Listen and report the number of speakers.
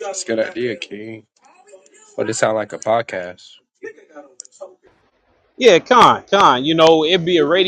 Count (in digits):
2